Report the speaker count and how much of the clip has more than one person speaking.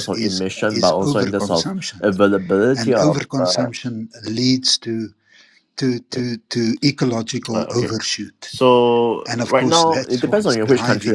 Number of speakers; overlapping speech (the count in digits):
2, about 46%